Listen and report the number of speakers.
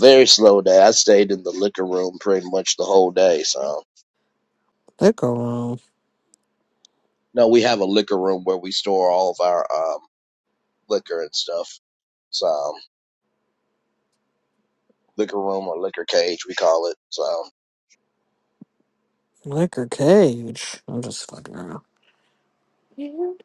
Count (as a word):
two